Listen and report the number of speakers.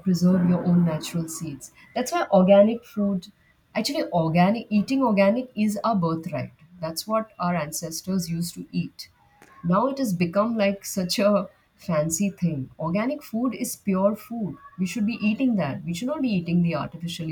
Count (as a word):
one